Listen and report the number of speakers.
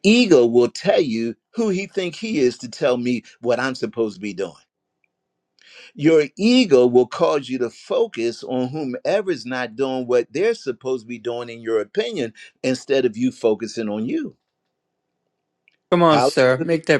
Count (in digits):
2